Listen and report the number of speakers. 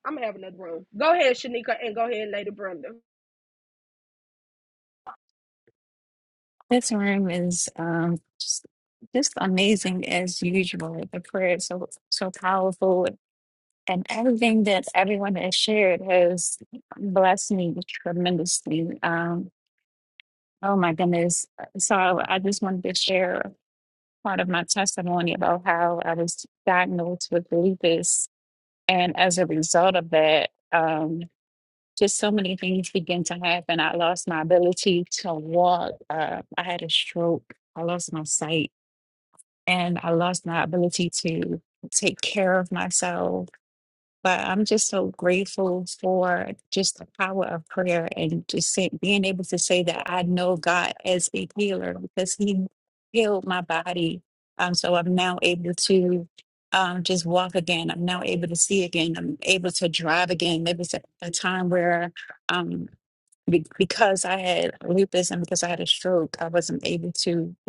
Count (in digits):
2